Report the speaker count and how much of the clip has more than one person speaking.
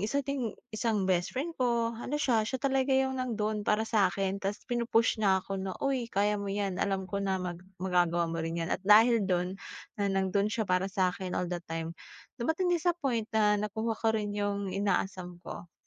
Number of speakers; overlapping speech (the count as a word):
one, no overlap